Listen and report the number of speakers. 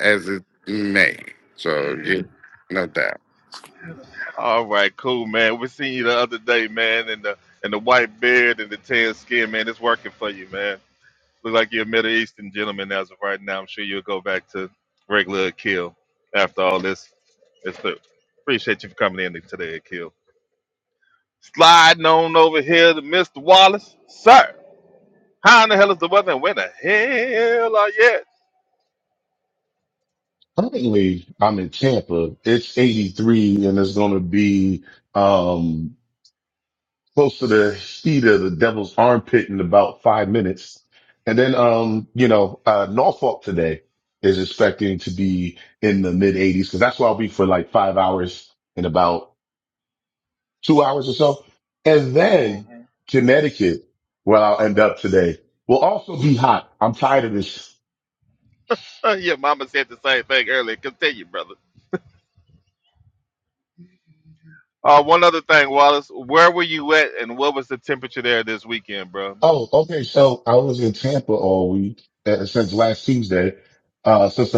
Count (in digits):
3